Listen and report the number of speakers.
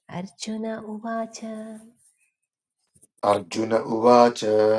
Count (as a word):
two